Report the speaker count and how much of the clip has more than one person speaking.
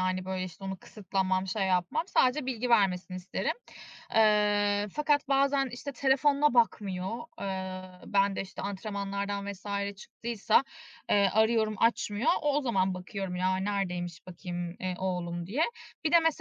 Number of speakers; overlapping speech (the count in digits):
1, no overlap